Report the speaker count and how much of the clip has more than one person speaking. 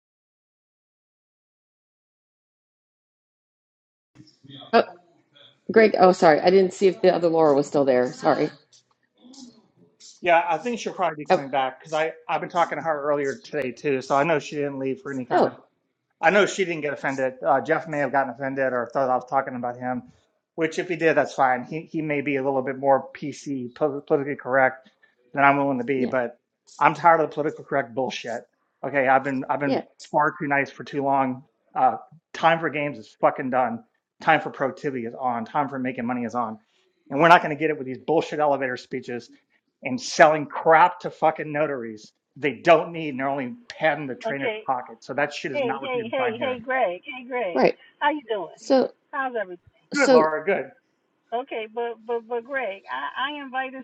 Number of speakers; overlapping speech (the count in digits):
3, about 5%